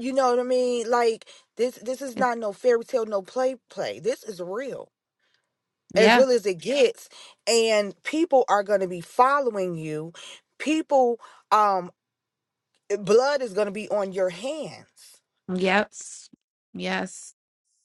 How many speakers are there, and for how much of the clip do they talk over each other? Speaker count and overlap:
two, about 2%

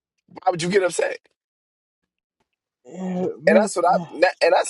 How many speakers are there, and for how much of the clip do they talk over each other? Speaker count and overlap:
two, about 14%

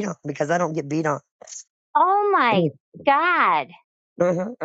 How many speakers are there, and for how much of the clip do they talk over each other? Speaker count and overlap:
two, no overlap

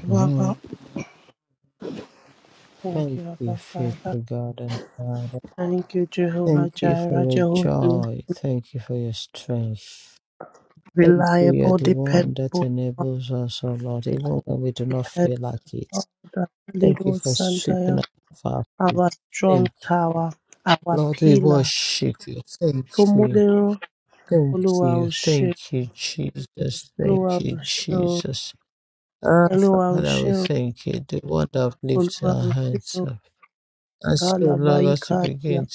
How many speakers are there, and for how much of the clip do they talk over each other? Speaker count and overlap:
two, about 37%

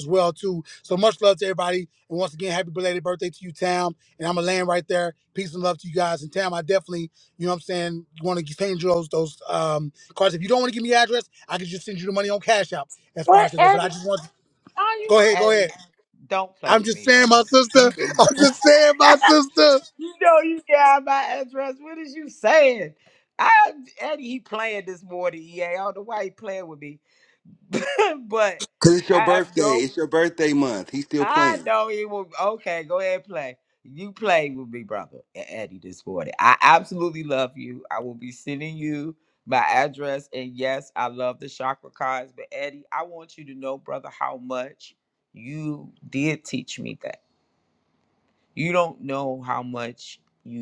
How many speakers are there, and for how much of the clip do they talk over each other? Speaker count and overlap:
three, about 8%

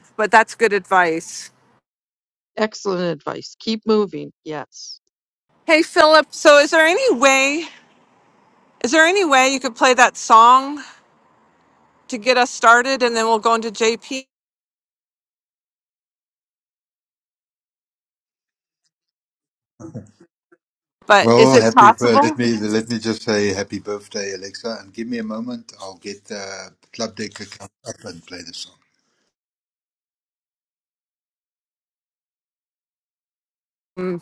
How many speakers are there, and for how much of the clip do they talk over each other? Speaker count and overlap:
three, about 3%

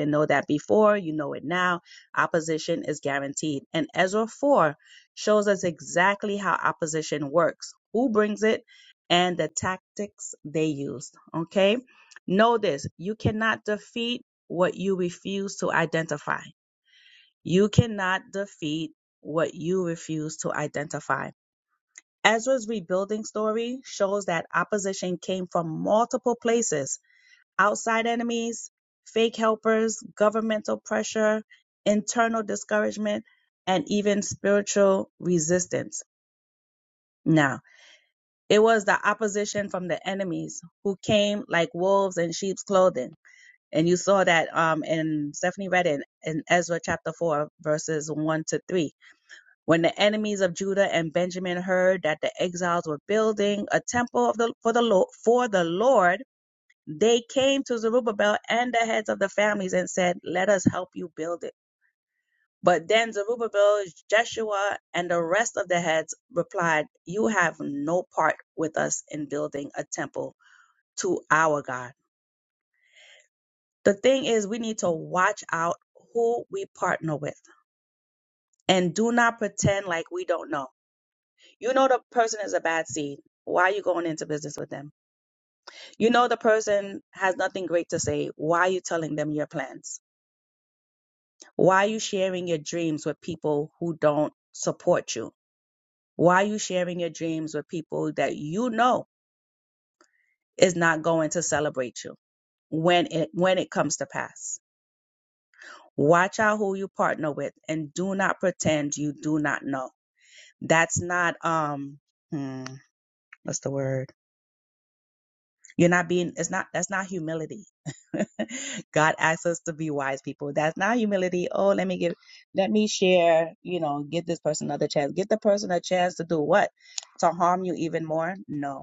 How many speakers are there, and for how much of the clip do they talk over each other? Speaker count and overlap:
one, no overlap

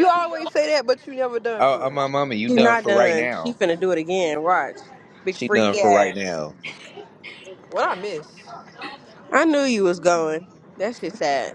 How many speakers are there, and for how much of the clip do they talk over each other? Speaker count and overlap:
three, about 19%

